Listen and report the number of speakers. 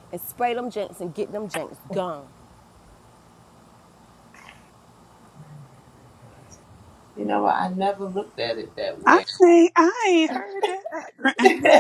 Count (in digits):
3